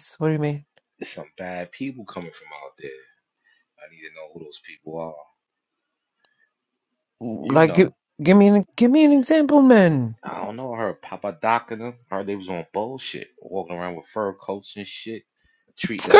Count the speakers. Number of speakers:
2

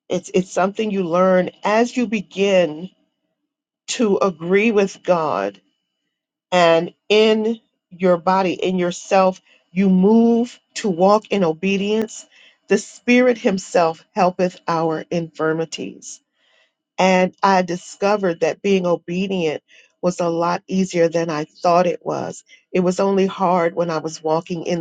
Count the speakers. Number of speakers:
1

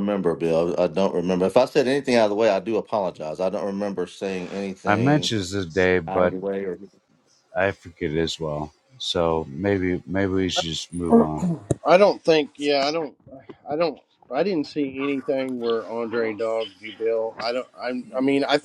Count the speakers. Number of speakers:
3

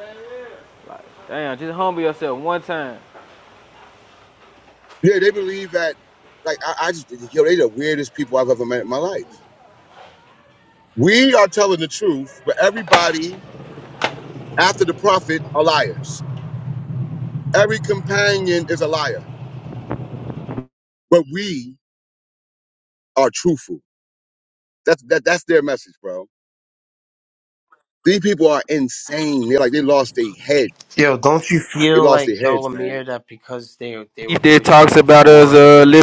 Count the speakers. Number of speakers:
3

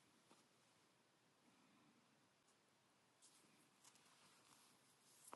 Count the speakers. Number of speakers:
0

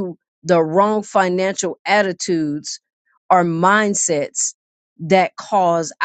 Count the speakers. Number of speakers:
1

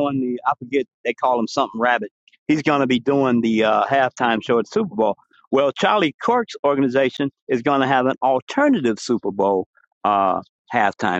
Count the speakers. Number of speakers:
1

